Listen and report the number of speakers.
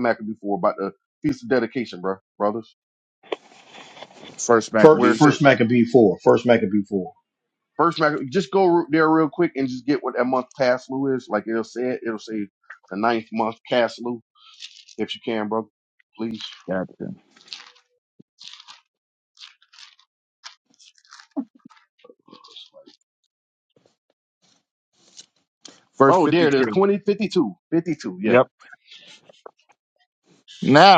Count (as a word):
three